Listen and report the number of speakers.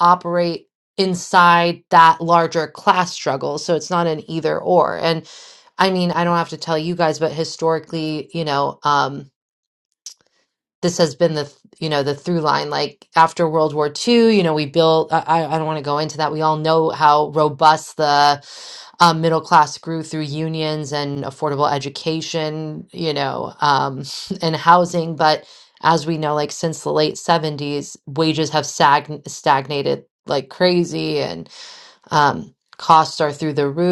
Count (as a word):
one